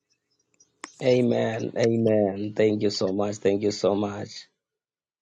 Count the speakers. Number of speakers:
1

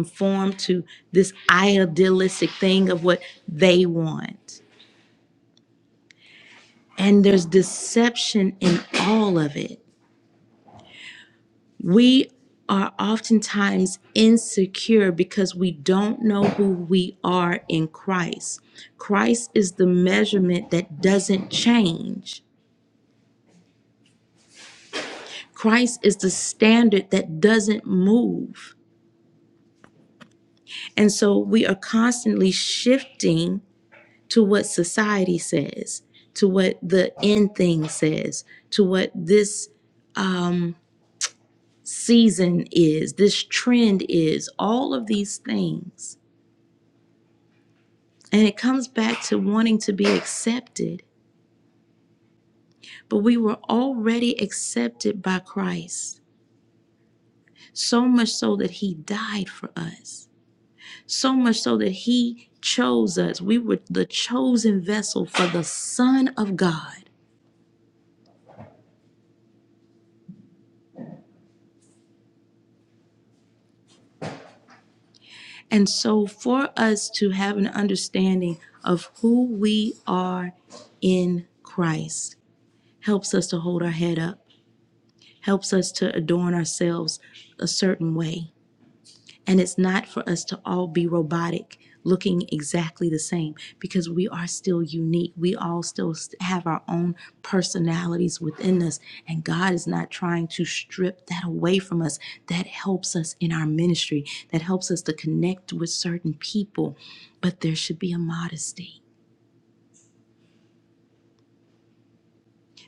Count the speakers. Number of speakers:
1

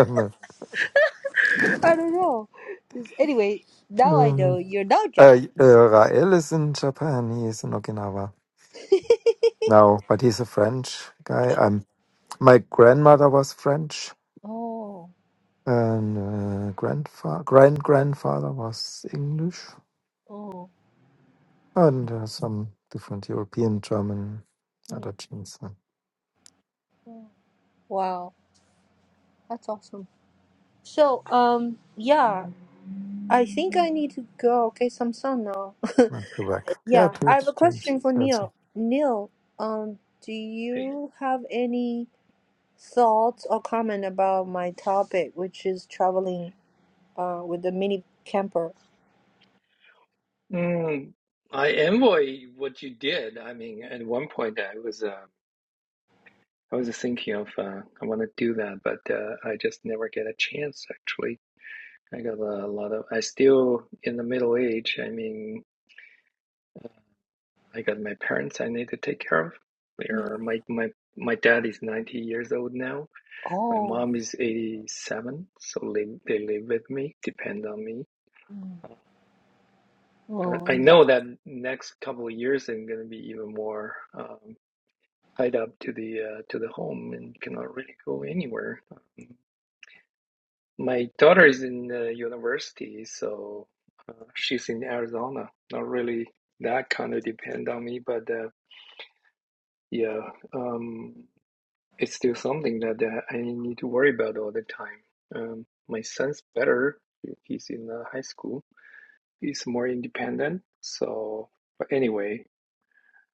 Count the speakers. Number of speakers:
3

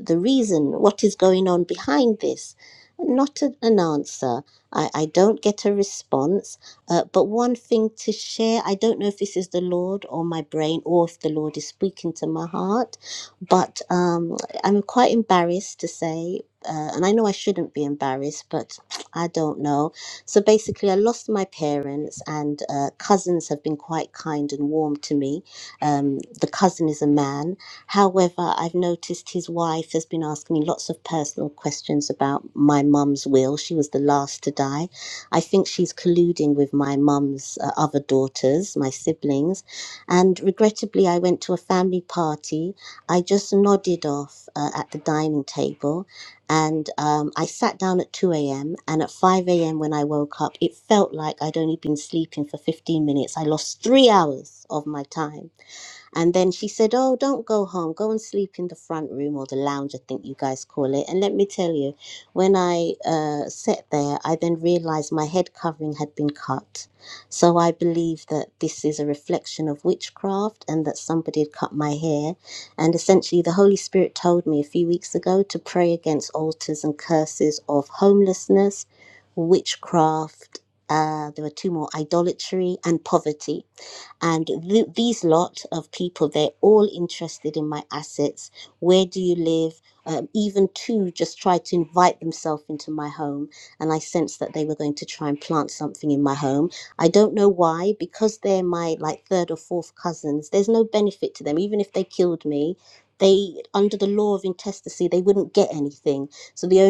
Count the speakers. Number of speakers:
1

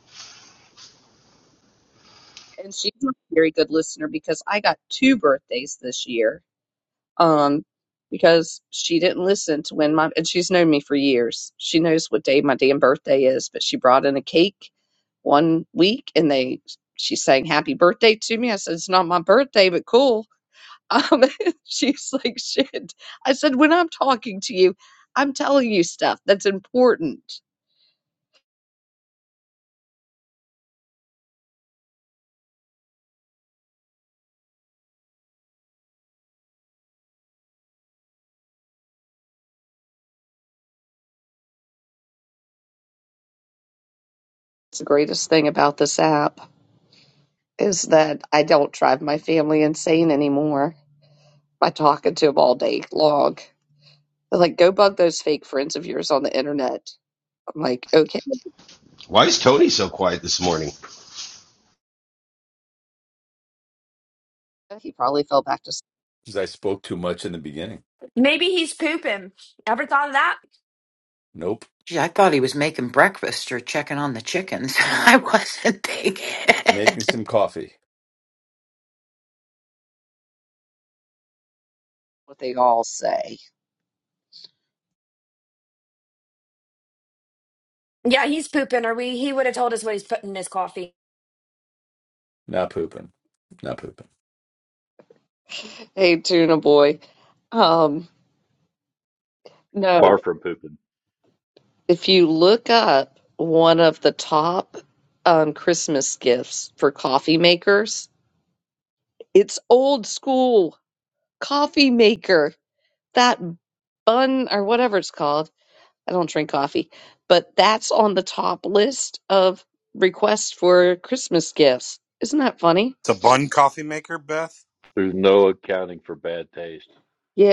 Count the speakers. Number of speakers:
7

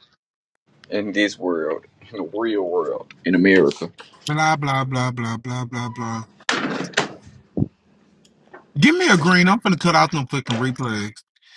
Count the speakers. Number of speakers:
2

